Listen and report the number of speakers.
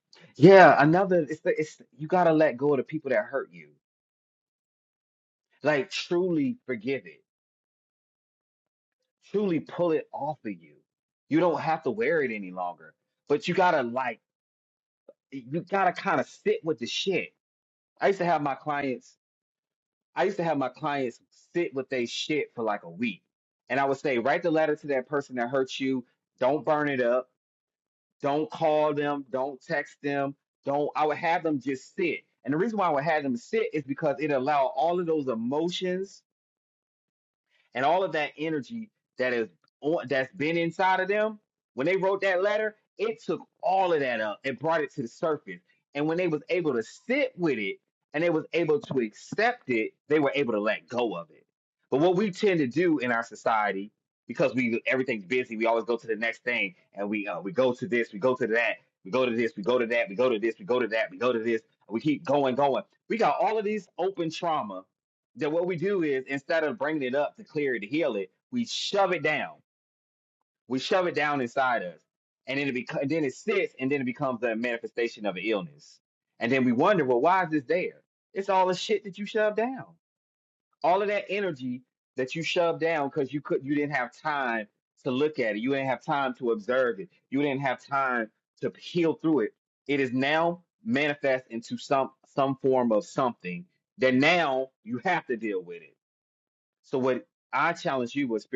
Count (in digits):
1